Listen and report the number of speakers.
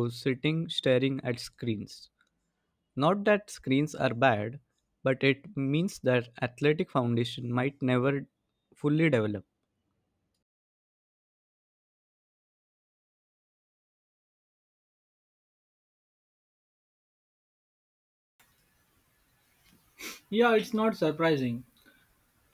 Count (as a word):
two